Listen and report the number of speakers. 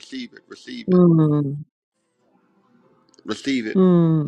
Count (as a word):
two